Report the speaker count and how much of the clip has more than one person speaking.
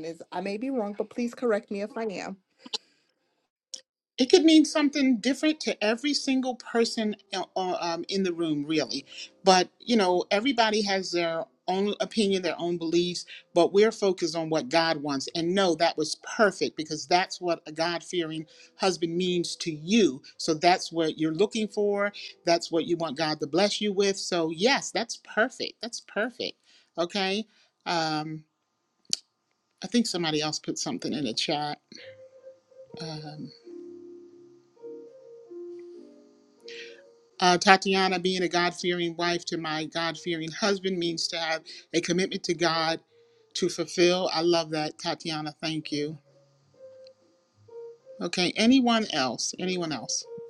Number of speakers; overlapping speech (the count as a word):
two, no overlap